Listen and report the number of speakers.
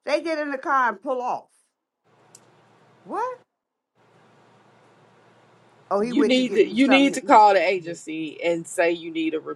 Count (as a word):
two